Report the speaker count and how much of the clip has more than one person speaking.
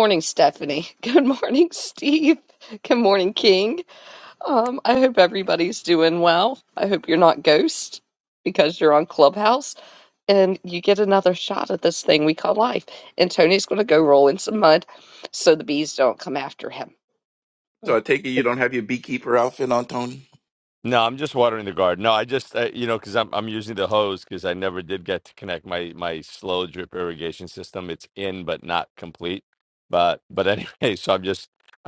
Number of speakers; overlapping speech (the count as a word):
three, under 1%